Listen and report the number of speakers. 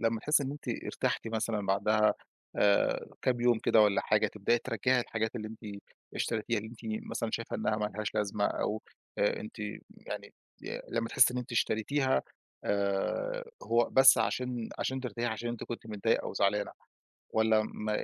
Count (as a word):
one